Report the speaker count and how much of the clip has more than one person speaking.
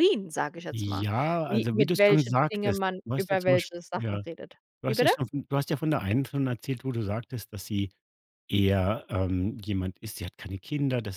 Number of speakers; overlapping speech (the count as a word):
two, about 27%